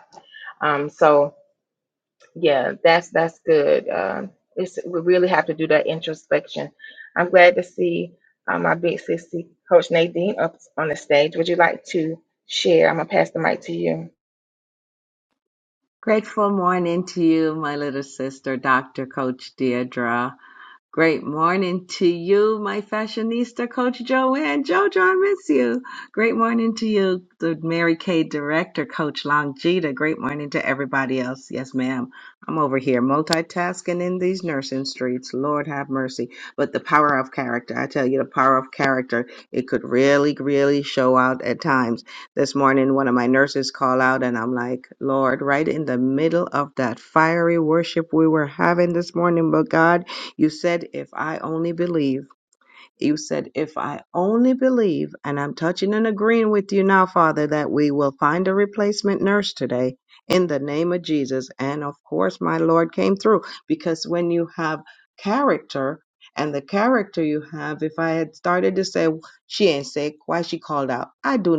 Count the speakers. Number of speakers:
two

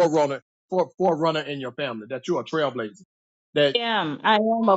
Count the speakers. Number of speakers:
two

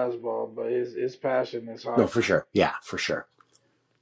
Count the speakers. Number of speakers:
two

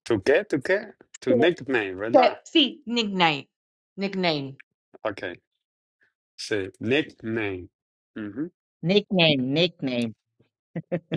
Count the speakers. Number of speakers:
three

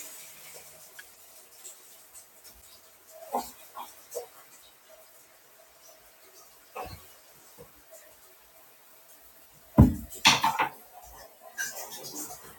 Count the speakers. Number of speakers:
zero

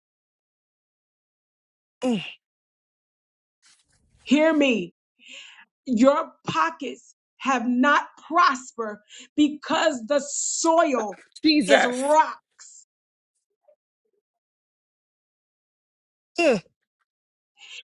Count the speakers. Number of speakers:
two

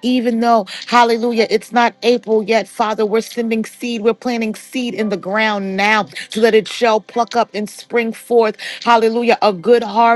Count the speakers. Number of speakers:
one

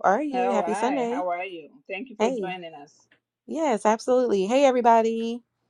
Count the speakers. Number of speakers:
two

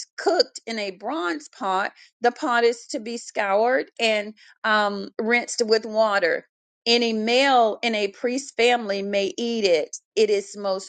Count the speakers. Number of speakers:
one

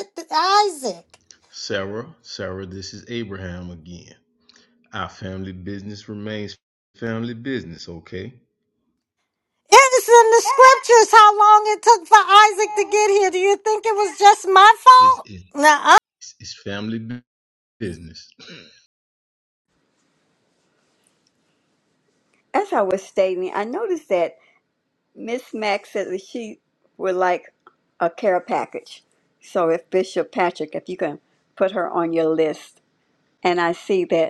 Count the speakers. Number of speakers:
three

